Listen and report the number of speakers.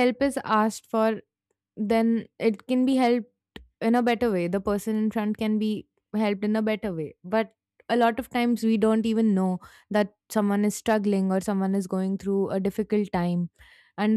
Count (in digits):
1